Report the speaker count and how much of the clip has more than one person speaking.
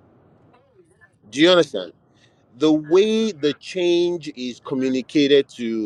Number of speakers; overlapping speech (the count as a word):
one, no overlap